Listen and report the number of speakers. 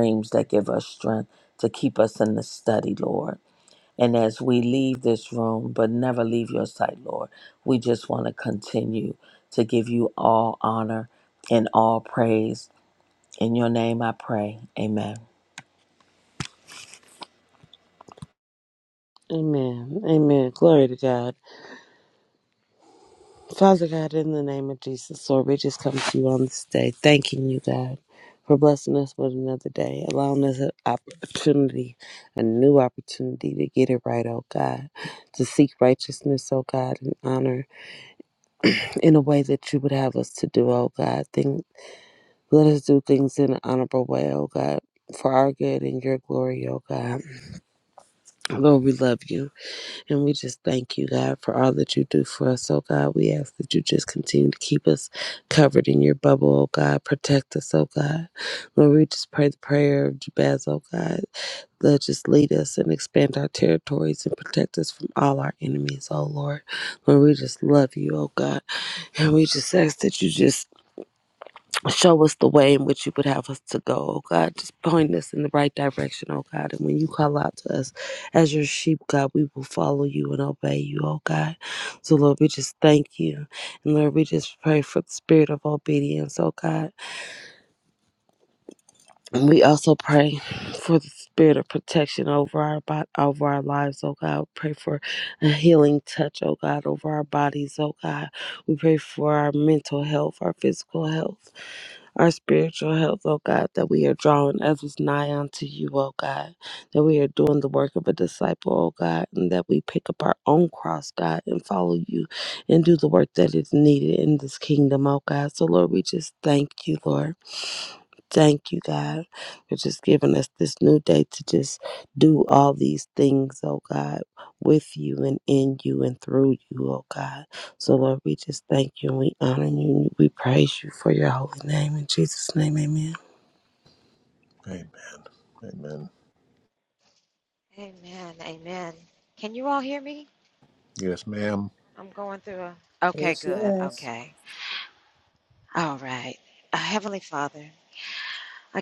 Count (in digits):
4